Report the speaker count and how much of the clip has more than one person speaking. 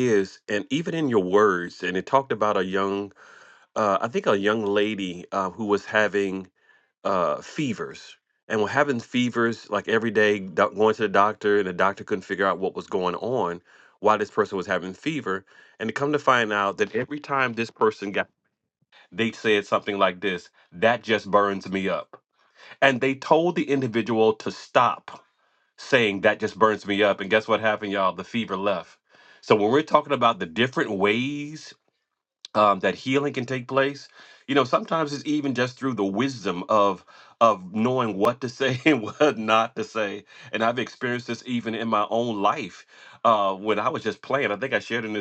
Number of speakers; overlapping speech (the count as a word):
one, no overlap